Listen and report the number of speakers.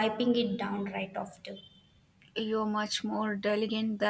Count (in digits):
2